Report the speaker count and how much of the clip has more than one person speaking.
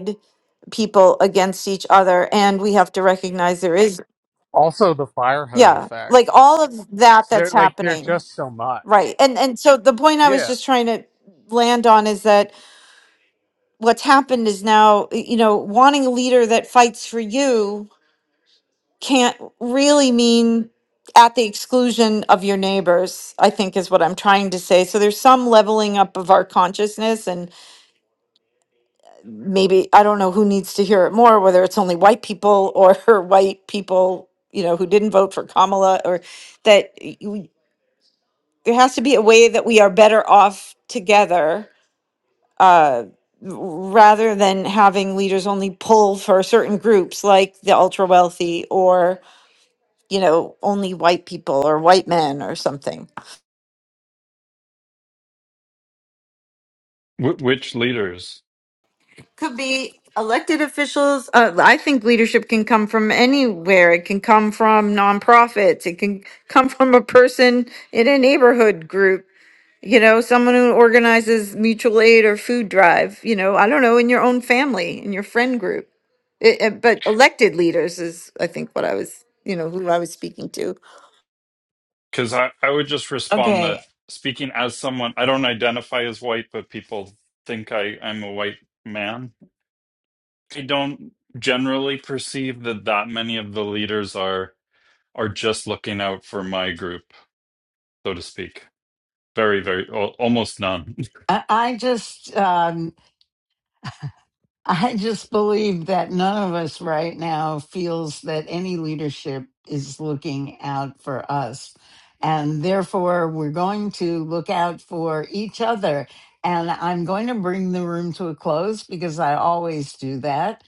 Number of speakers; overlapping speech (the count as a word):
four, about 2%